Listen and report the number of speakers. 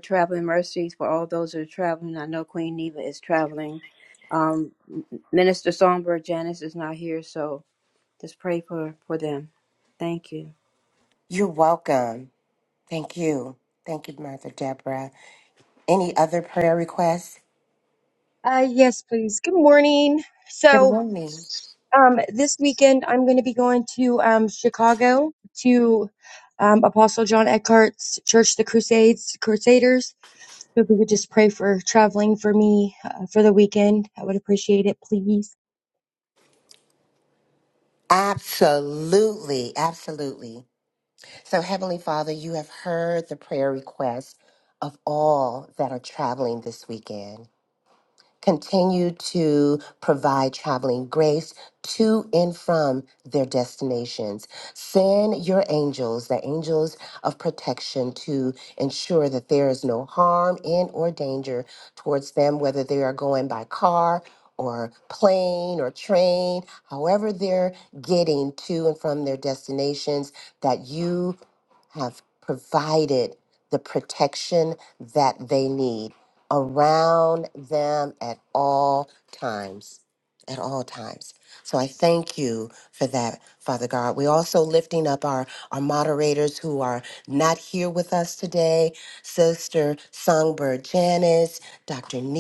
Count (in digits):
3